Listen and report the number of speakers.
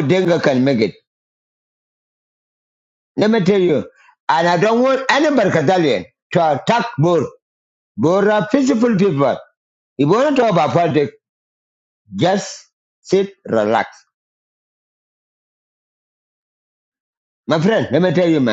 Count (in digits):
1